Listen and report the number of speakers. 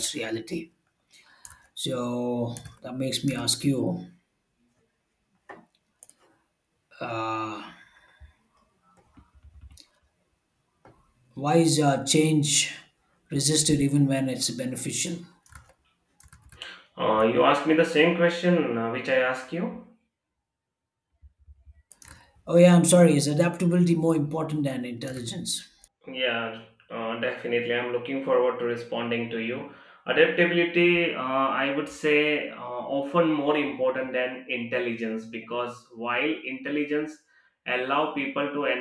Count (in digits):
2